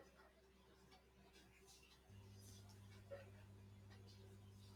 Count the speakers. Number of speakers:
0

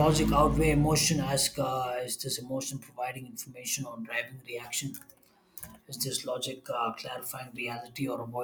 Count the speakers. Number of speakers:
1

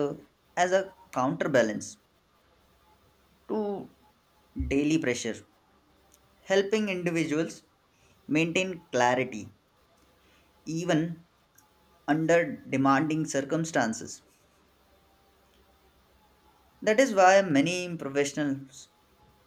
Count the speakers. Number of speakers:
1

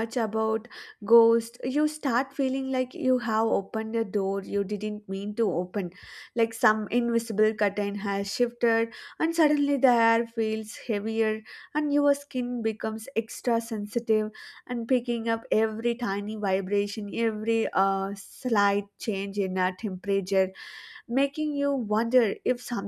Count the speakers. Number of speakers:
1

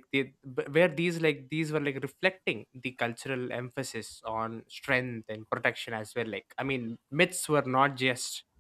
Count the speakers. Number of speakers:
1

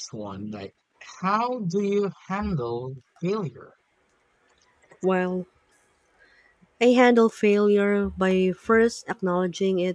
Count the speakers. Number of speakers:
2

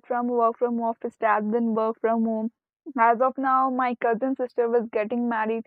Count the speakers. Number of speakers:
1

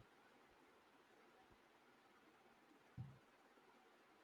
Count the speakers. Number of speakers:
0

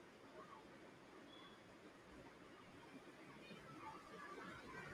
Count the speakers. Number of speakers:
0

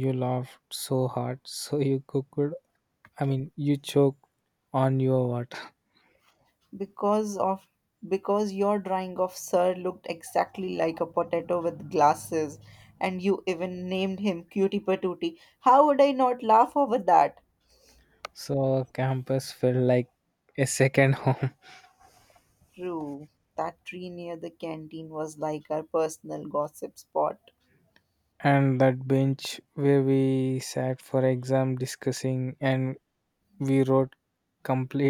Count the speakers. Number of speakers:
2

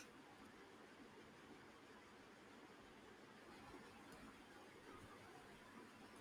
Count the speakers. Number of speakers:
0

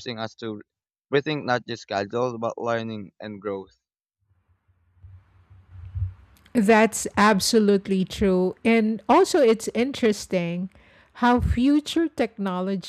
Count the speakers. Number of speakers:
2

